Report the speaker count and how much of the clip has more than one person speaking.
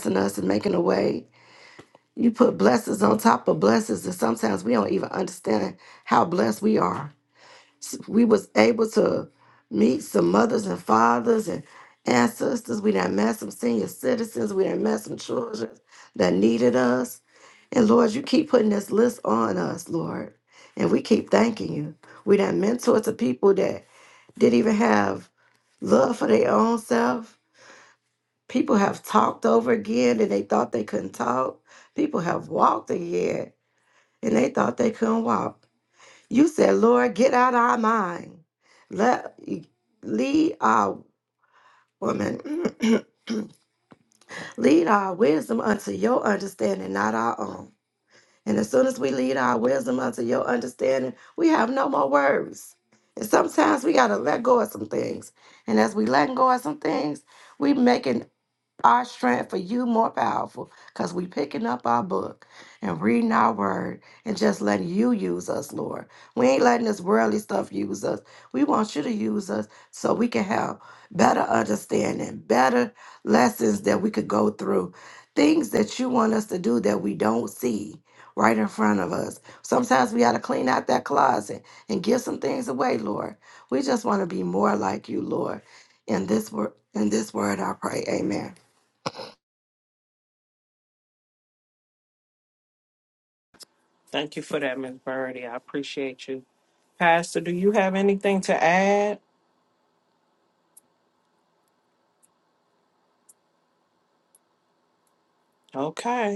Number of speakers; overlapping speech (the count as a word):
two, no overlap